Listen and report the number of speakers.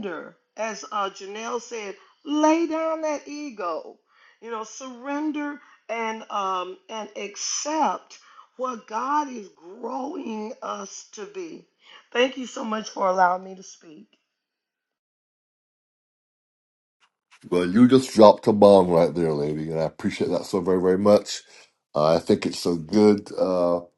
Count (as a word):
two